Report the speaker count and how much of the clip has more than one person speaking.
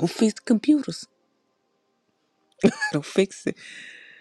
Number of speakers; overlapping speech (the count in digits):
1, no overlap